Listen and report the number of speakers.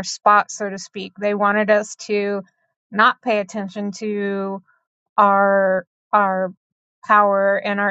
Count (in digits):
1